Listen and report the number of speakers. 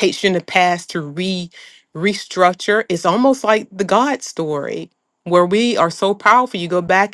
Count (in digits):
1